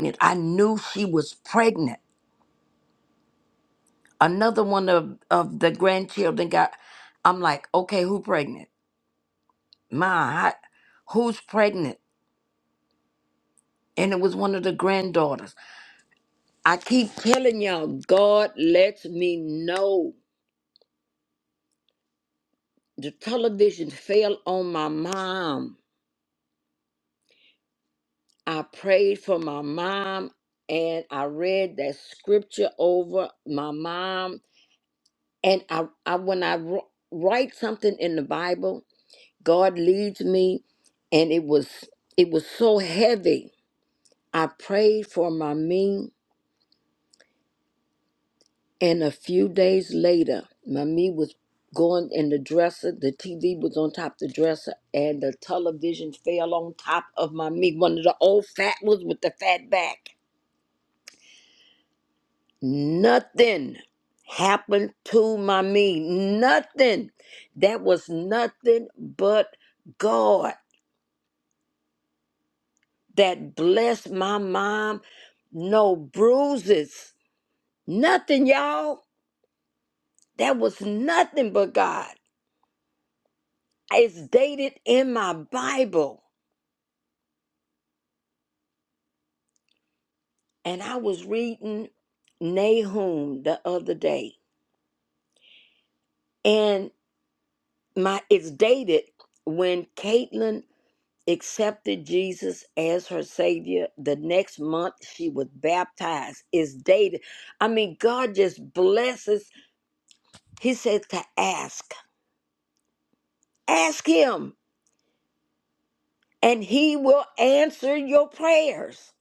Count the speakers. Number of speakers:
1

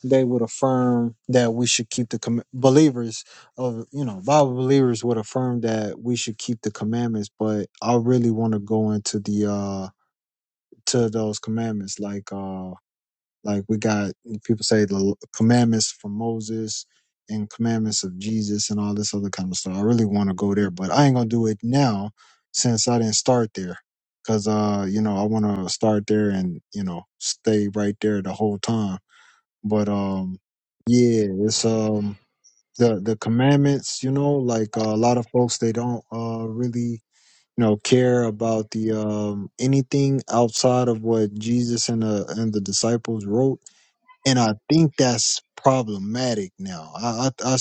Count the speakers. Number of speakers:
1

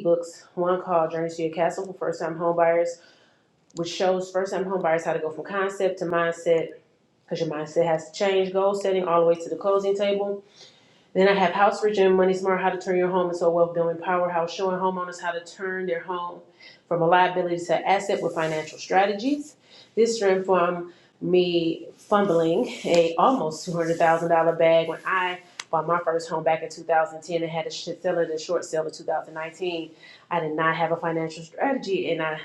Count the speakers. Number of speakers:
1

